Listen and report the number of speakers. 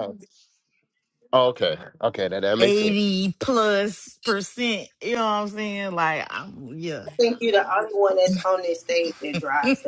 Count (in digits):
3